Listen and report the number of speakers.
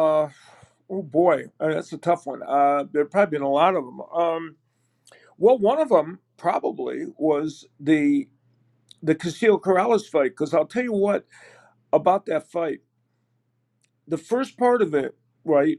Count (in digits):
1